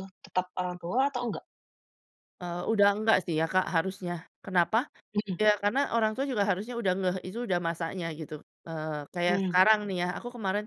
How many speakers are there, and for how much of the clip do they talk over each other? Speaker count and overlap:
2, about 3%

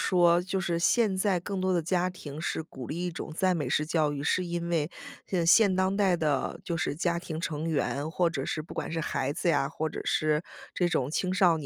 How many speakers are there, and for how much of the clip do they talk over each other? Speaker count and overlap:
1, no overlap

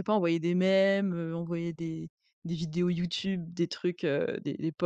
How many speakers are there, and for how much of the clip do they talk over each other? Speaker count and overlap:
1, no overlap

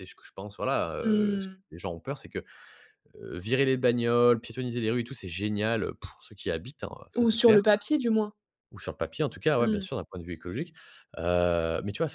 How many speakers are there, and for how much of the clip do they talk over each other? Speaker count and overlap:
2, about 11%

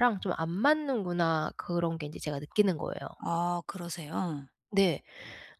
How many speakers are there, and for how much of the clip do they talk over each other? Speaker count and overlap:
2, no overlap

